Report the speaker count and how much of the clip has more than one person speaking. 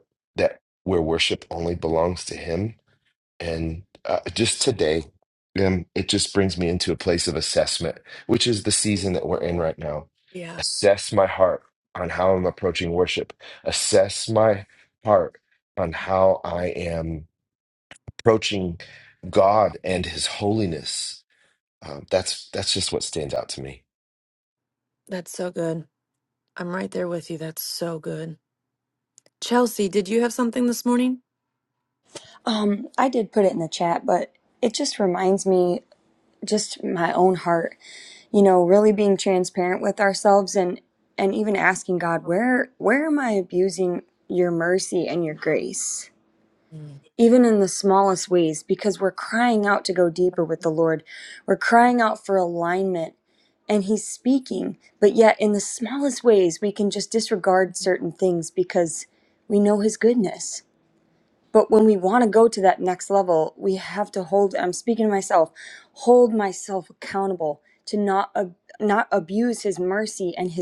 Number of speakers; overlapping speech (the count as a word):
three, under 1%